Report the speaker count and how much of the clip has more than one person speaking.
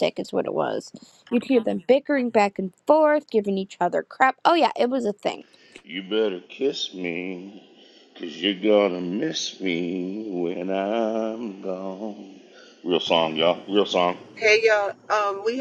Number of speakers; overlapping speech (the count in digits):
3, no overlap